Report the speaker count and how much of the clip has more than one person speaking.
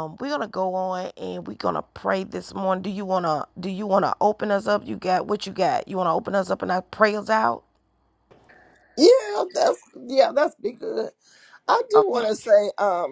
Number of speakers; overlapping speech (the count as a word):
two, about 3%